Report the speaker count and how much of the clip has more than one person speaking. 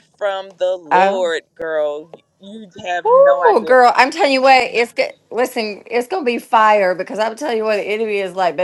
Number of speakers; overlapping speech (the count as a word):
two, about 12%